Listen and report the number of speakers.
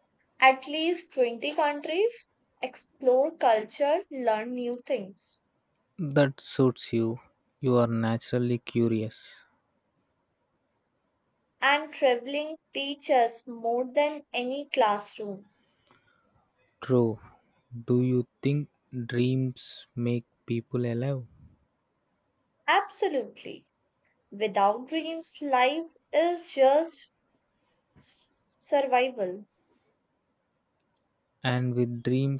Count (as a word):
two